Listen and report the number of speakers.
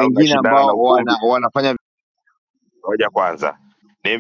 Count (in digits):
2